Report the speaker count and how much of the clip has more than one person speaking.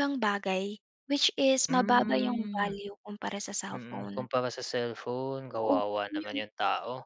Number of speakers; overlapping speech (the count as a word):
two, about 29%